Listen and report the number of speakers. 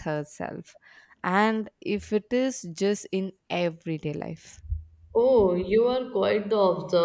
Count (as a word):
two